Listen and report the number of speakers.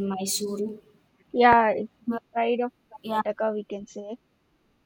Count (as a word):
two